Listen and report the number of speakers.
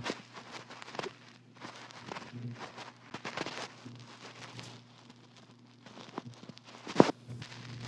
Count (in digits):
0